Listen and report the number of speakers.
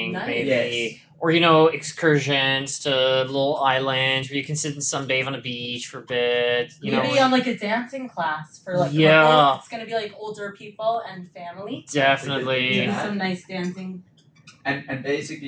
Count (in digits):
3